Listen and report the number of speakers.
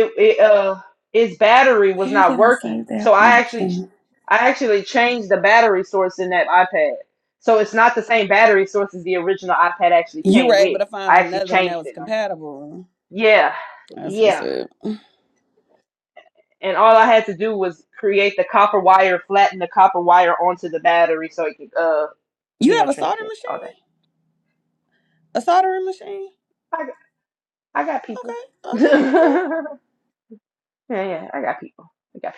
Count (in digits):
2